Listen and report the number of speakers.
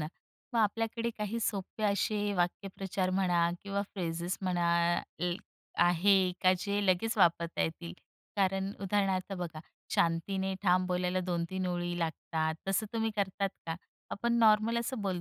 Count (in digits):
1